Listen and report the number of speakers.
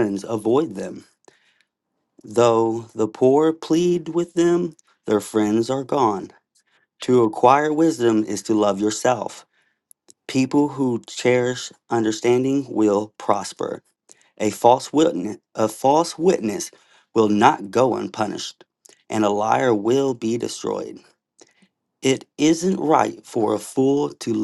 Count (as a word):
one